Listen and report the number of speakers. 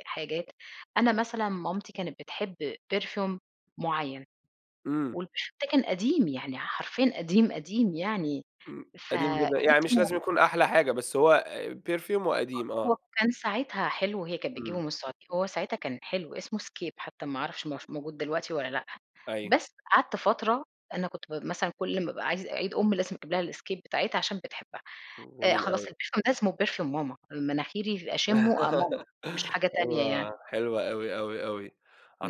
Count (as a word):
two